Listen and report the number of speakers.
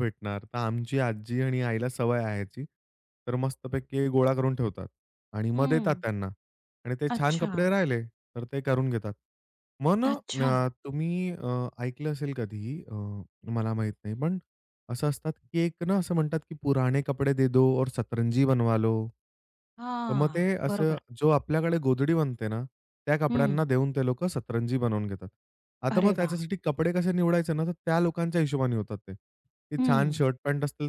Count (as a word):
two